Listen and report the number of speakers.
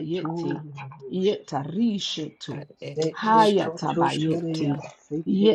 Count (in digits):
2